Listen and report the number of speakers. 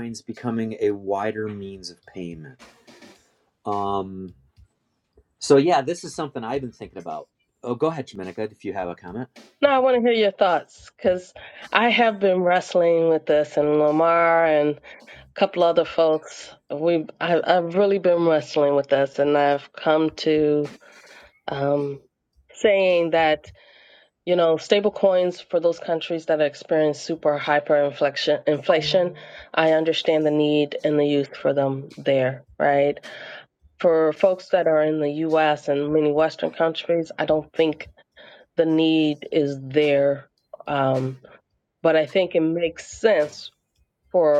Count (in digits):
2